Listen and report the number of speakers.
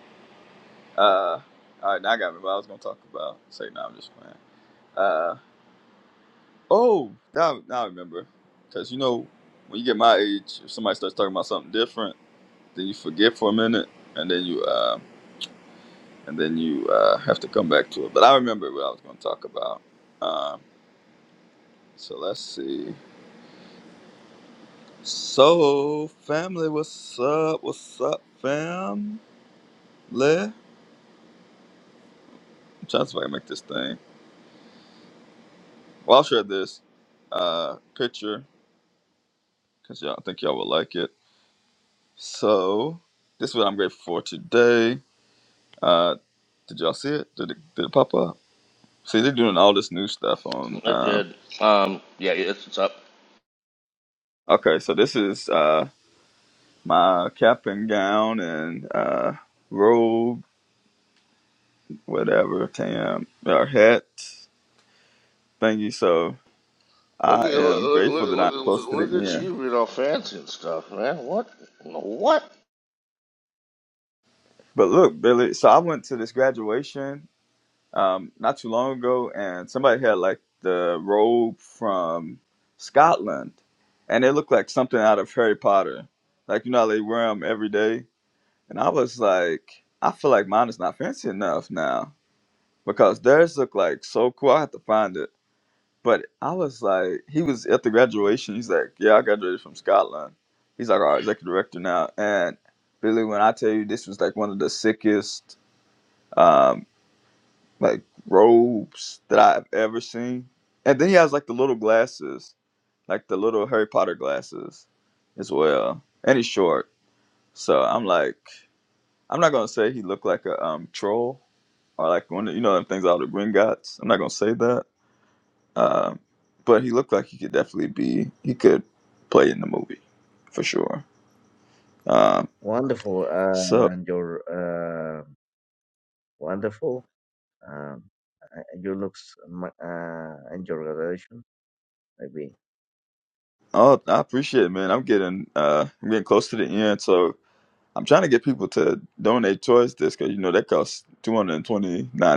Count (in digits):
3